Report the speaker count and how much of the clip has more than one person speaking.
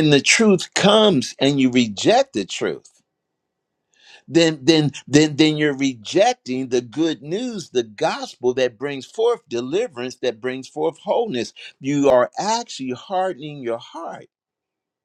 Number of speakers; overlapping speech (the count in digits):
1, no overlap